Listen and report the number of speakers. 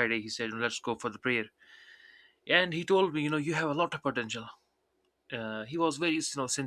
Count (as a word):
one